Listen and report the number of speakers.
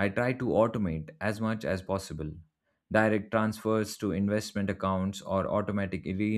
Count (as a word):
one